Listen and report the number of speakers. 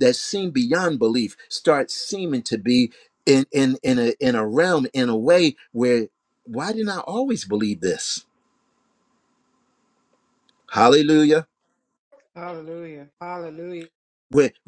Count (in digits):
2